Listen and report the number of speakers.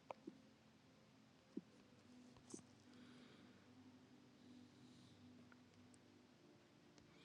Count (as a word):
zero